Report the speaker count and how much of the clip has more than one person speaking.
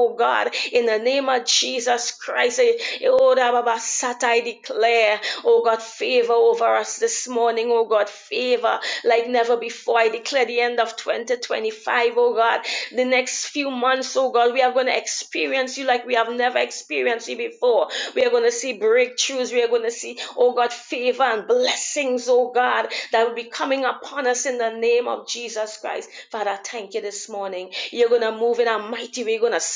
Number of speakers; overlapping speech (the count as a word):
one, no overlap